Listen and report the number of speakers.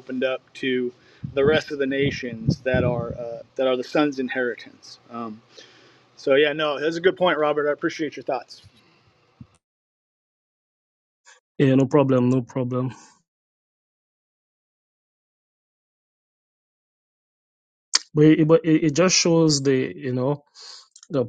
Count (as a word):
two